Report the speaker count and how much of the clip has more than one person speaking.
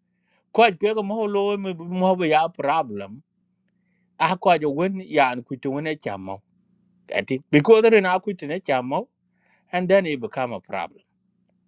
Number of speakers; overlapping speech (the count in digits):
1, no overlap